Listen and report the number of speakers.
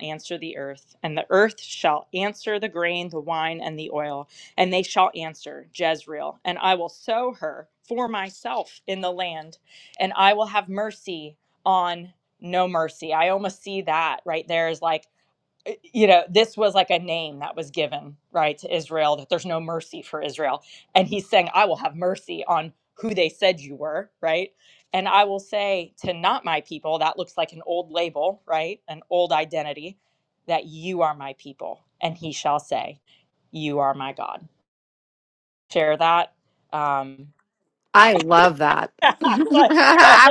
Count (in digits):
2